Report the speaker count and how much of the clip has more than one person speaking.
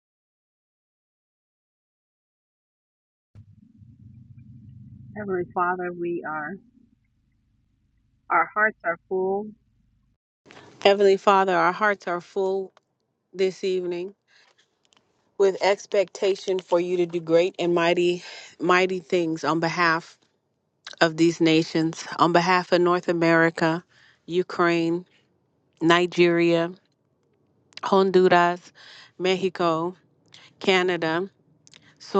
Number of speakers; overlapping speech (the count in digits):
1, no overlap